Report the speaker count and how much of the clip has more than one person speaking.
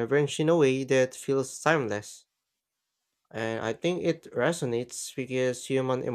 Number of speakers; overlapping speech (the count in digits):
1, no overlap